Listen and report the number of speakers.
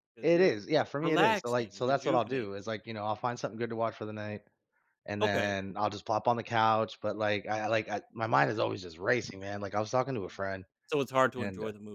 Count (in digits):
2